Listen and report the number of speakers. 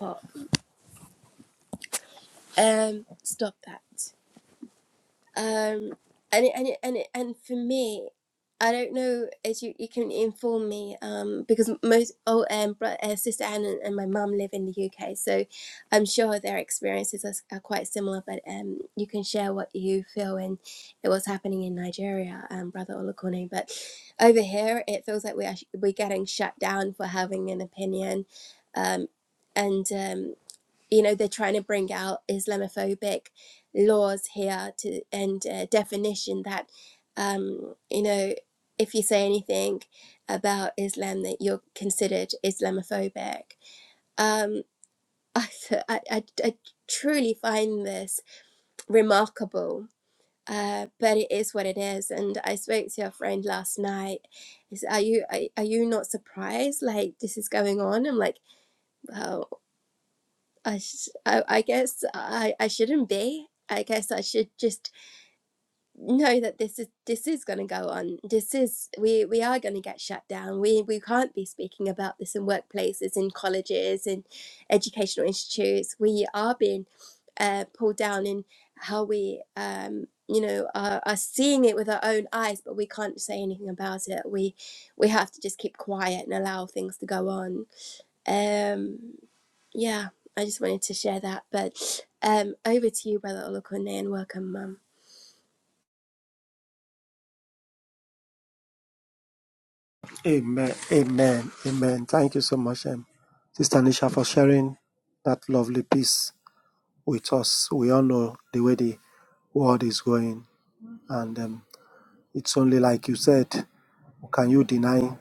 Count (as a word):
two